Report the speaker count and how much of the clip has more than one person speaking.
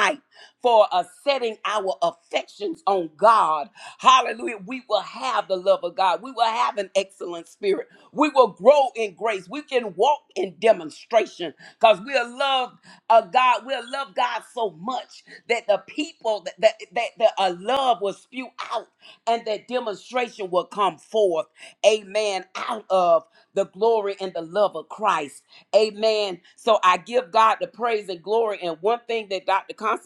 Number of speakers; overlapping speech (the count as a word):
one, no overlap